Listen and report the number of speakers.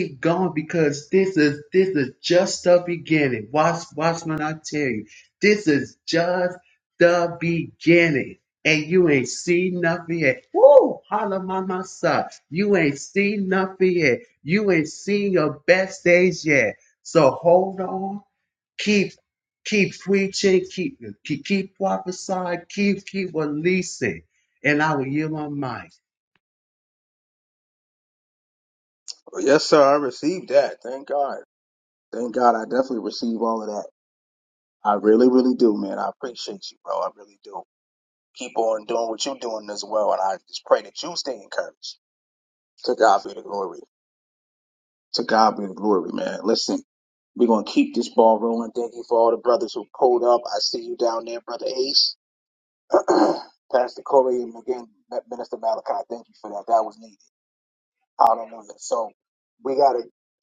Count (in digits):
2